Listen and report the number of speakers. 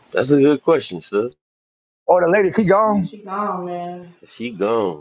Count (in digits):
3